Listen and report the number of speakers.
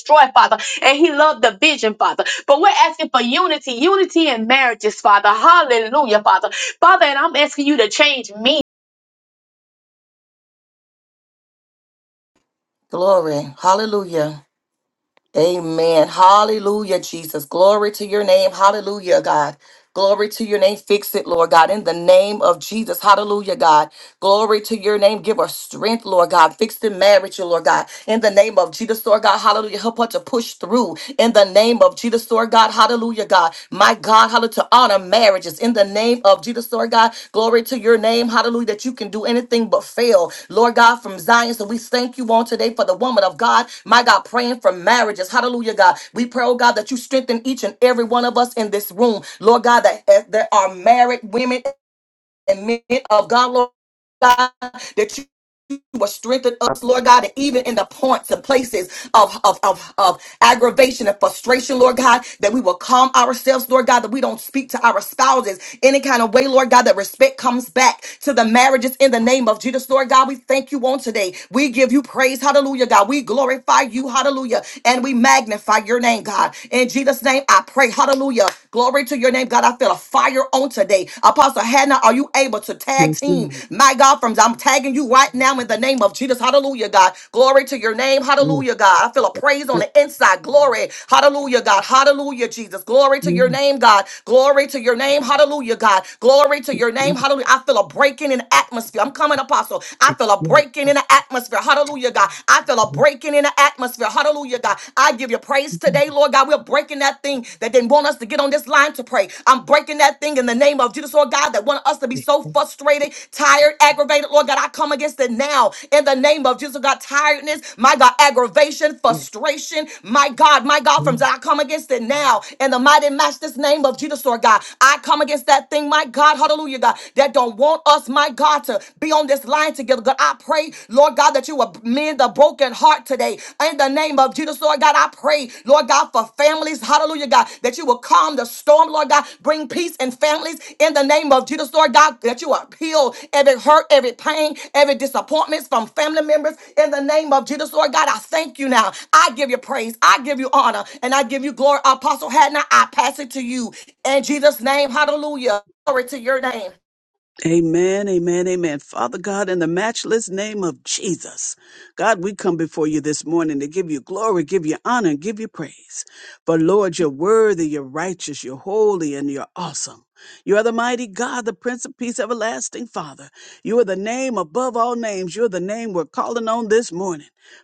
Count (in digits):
3